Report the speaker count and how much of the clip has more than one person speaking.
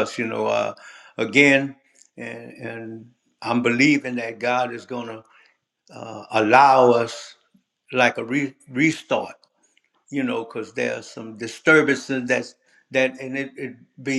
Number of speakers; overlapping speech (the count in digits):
1, no overlap